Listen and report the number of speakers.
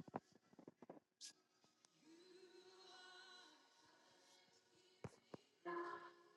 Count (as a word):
zero